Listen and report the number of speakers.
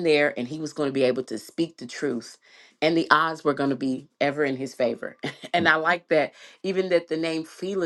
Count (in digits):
1